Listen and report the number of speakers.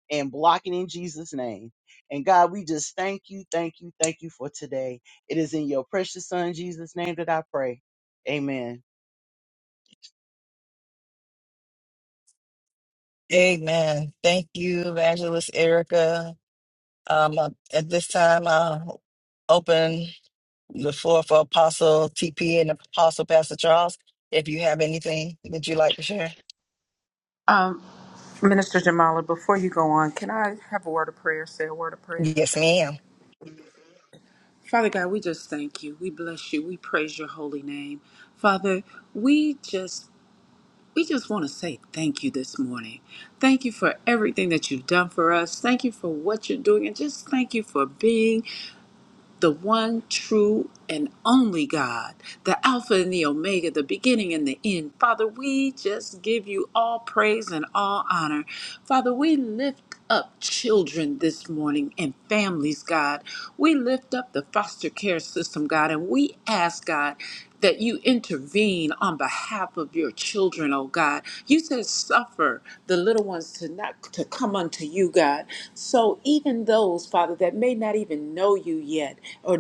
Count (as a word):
three